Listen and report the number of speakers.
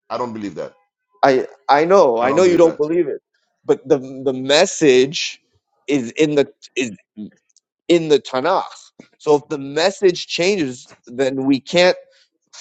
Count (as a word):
two